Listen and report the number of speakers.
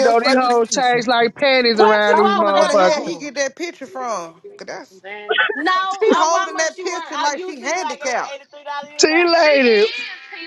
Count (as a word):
four